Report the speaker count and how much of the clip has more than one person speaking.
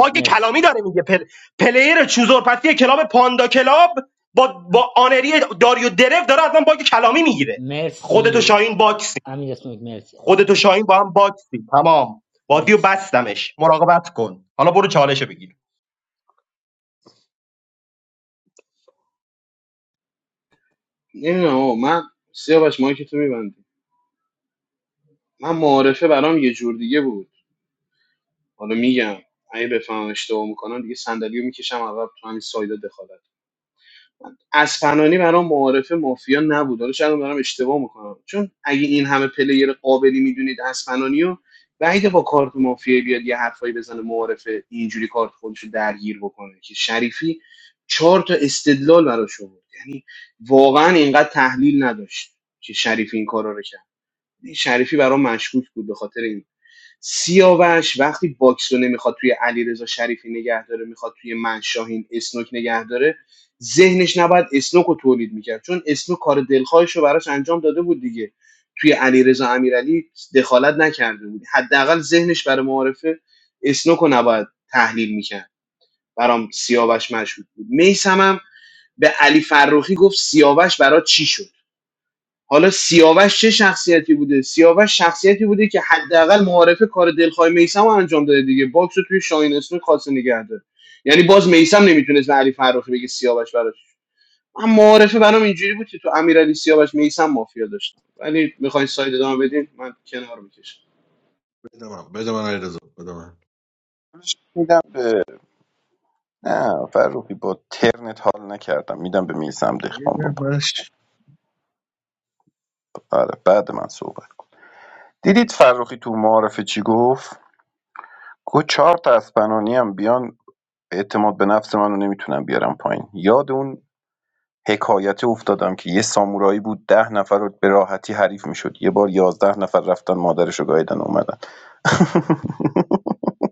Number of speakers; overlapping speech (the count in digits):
5, about 2%